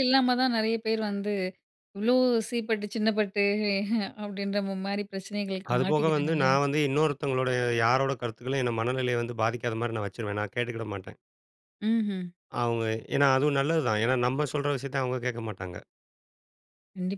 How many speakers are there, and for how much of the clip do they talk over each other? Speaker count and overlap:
2, about 5%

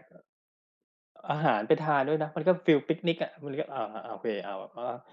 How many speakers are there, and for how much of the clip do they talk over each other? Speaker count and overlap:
1, no overlap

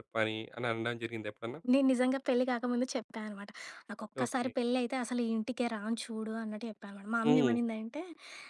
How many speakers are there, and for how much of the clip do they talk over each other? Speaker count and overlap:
2, about 8%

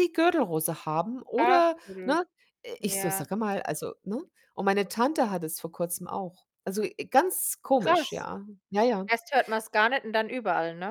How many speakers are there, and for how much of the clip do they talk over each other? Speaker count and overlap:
2, about 14%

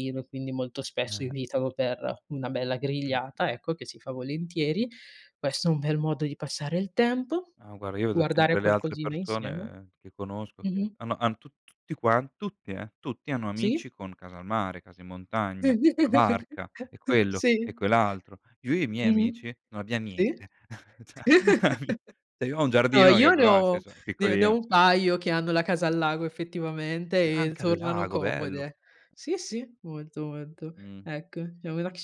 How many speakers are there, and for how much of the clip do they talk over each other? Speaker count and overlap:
2, about 18%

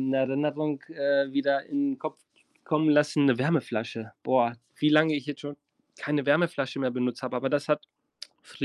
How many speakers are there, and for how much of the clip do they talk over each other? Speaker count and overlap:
1, no overlap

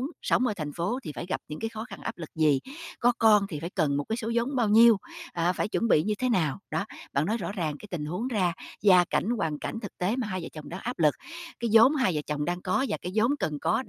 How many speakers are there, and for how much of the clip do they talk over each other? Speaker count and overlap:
1, no overlap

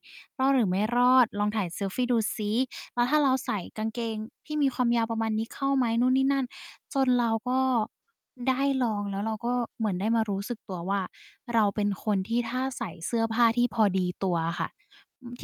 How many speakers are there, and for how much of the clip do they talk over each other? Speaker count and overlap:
1, no overlap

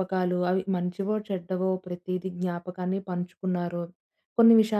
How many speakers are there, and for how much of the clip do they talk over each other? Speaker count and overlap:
1, no overlap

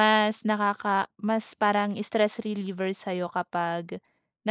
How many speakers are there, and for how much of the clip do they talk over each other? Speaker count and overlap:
1, no overlap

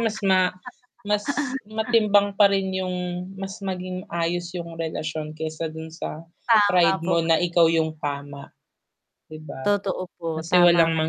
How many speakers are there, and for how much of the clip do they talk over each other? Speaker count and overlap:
2, about 12%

